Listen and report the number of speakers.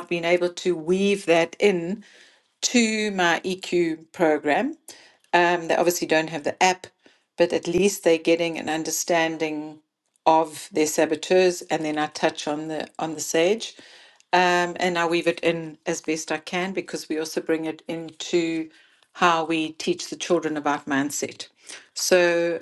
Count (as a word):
one